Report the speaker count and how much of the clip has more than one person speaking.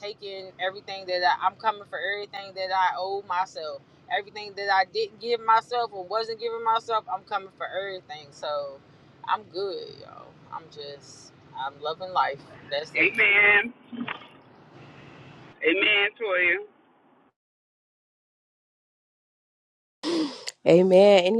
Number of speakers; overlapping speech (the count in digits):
3, about 1%